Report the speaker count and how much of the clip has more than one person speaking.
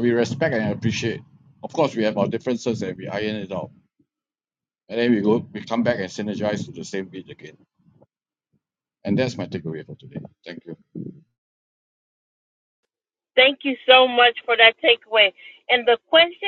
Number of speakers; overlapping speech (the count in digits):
2, no overlap